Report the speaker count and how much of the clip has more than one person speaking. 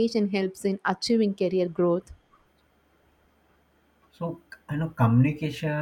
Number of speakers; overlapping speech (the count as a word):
two, no overlap